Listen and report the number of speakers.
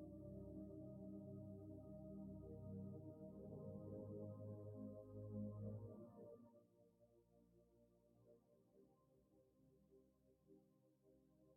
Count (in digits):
0